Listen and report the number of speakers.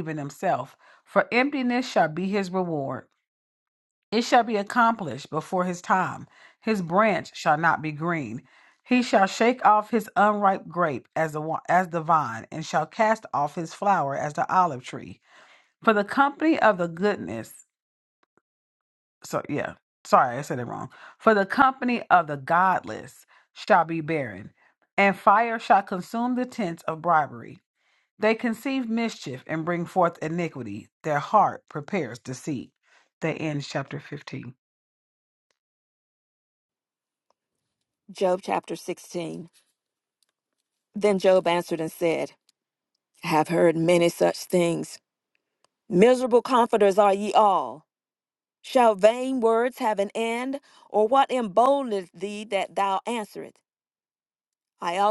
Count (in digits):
2